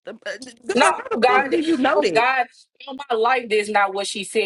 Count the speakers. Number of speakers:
two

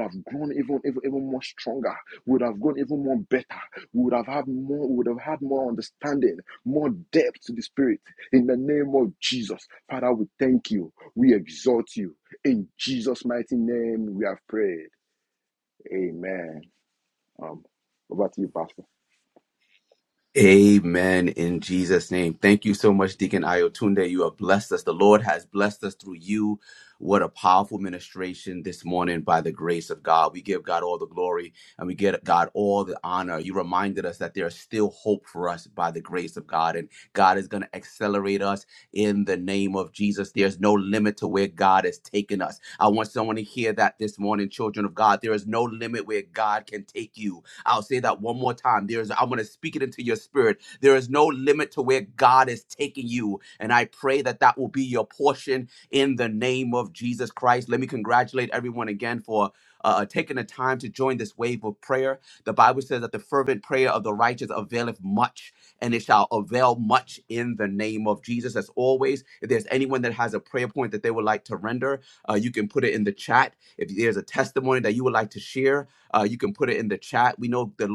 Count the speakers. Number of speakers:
two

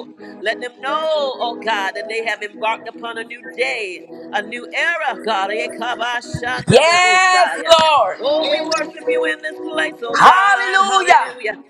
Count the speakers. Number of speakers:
two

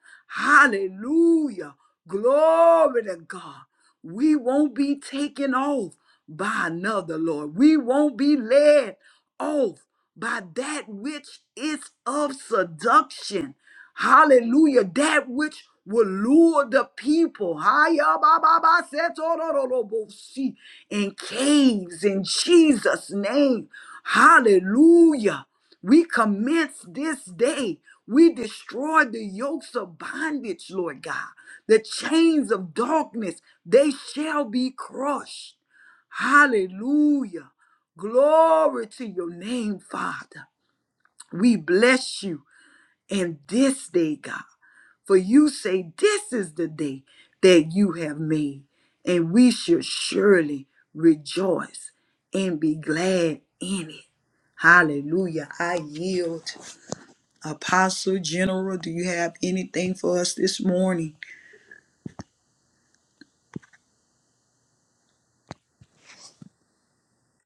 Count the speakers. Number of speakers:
one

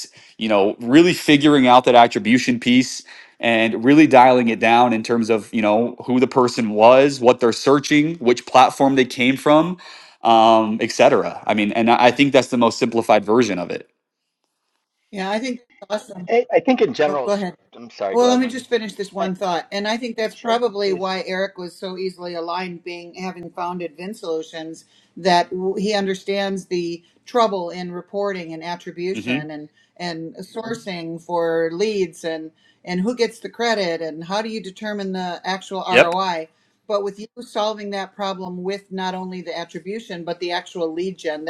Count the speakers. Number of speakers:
three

